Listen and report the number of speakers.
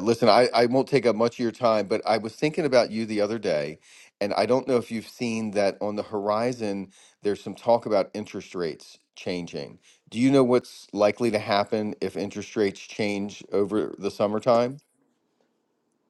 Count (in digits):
1